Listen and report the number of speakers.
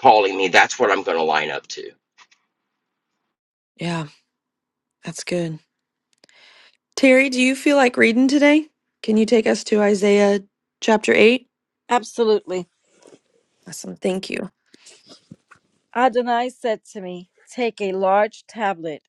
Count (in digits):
3